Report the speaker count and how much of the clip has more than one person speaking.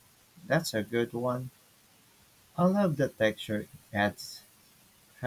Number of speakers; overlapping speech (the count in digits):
1, no overlap